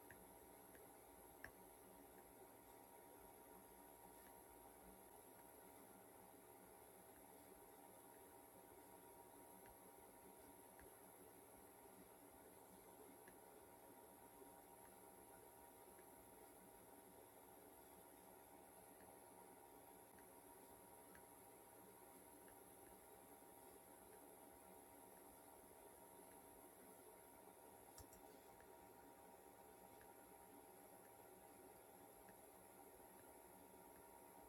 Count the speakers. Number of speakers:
0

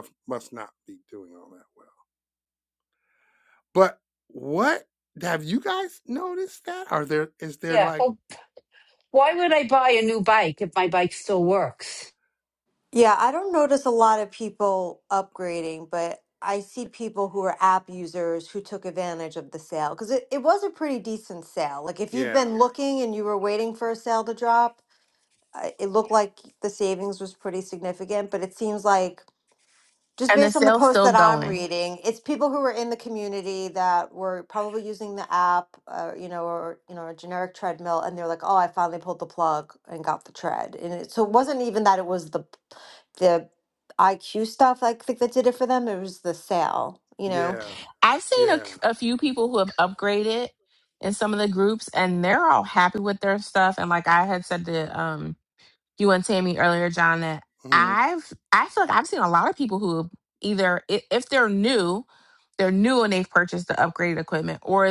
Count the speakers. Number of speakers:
4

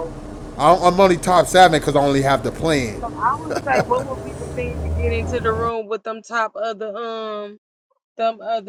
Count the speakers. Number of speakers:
2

